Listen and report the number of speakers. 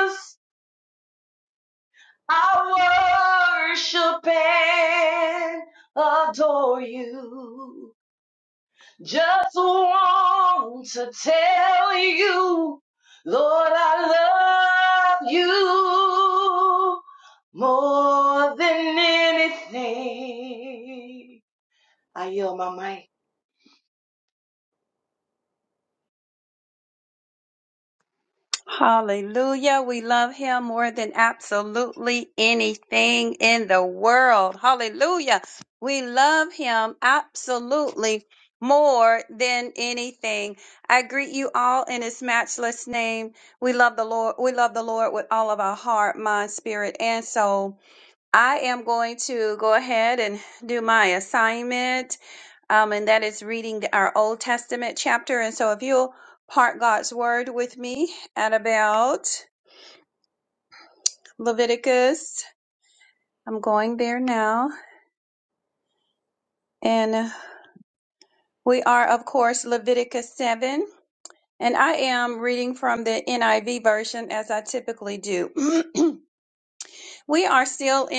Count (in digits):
2